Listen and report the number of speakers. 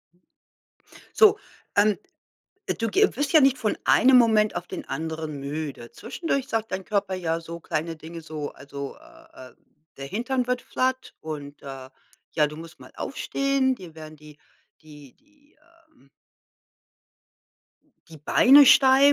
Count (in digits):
1